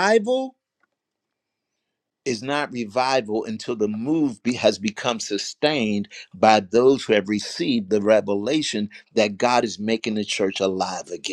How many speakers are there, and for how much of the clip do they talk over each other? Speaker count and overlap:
1, no overlap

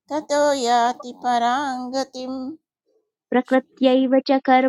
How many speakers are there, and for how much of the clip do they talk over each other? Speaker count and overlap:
2, no overlap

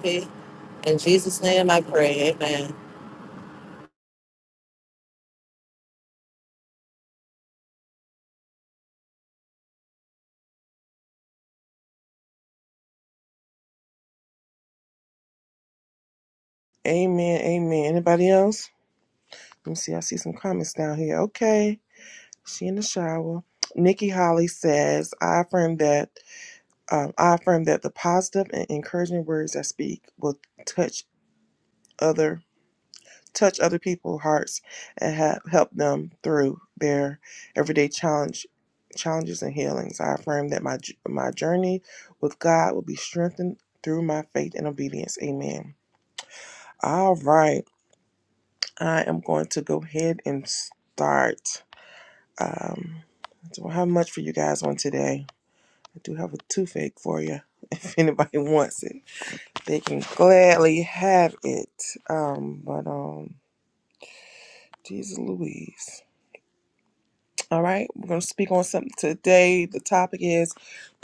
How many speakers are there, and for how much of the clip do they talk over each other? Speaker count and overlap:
2, no overlap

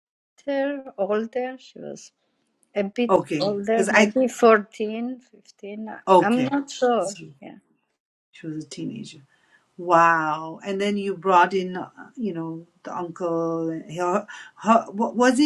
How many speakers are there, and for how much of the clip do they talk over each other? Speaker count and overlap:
2, about 11%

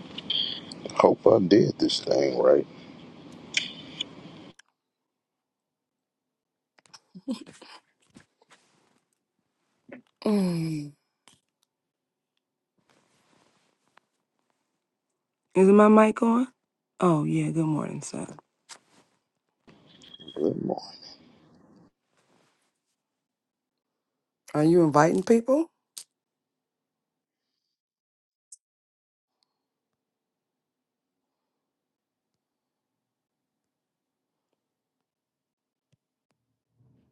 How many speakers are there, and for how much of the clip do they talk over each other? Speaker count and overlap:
2, no overlap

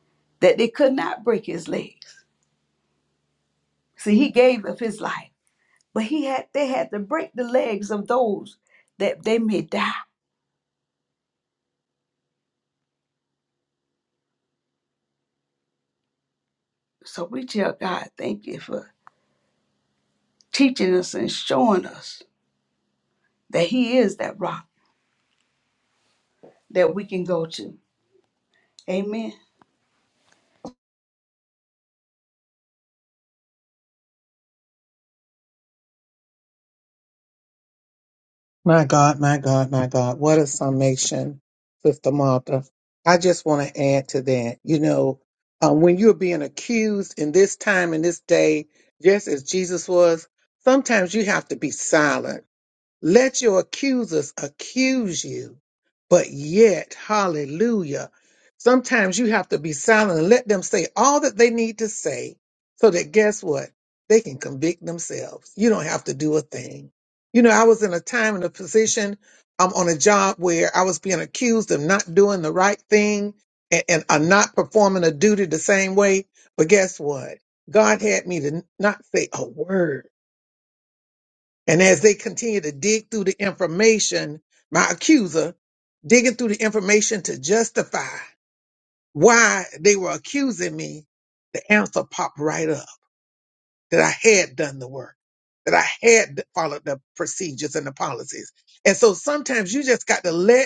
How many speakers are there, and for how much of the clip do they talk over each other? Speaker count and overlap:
2, no overlap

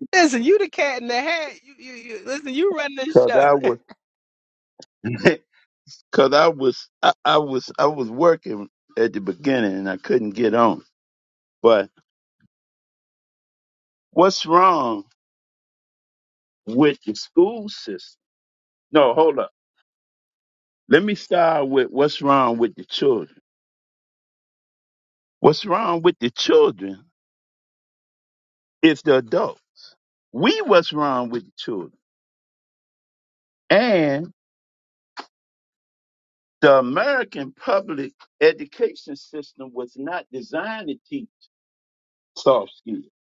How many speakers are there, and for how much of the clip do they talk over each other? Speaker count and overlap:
2, about 1%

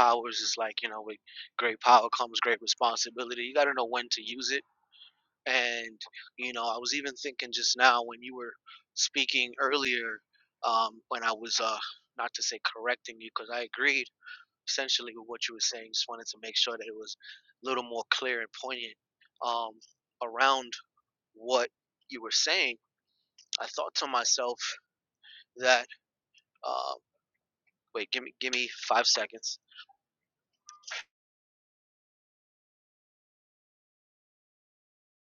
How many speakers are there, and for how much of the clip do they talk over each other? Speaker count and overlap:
1, no overlap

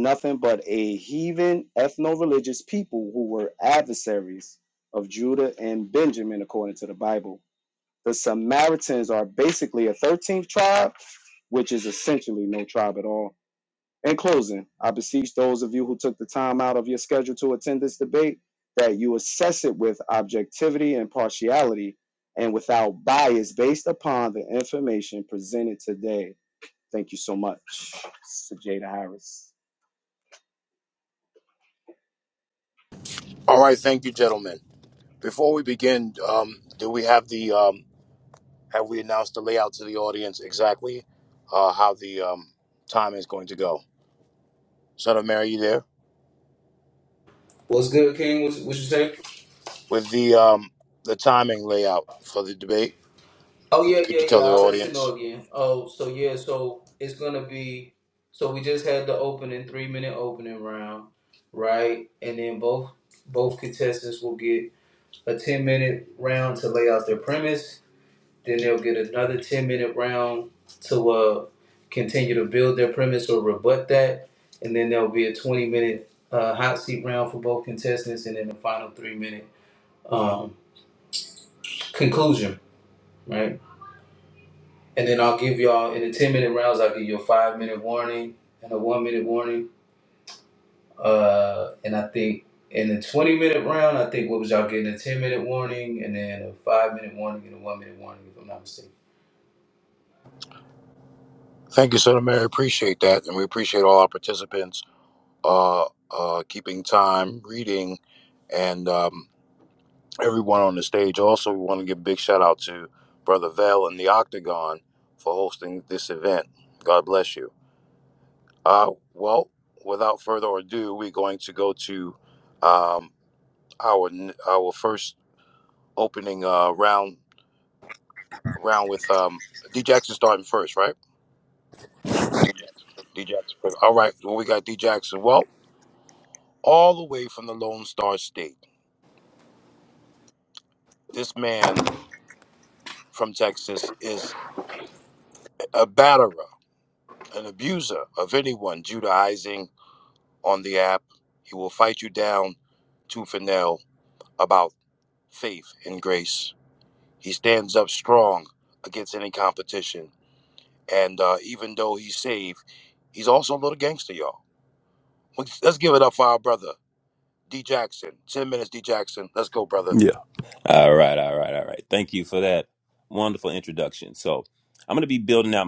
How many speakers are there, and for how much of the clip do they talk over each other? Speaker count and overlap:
4, about 1%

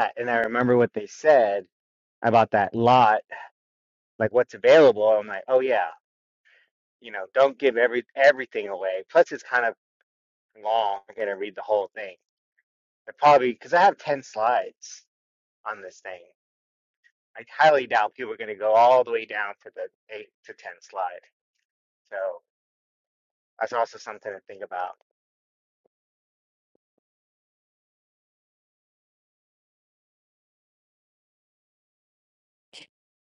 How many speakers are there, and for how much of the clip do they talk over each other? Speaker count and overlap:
1, no overlap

